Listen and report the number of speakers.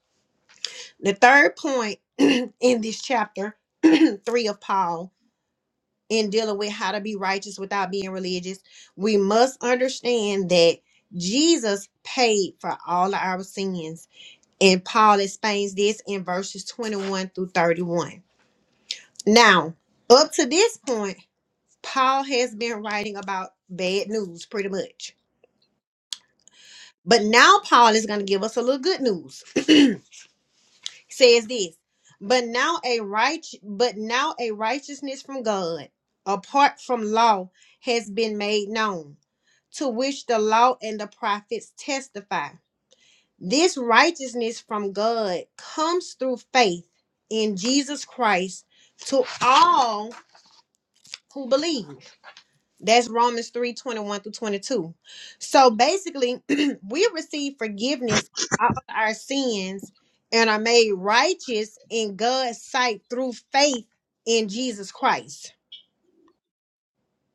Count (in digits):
1